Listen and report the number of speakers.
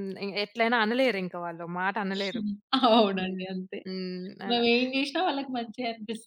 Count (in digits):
2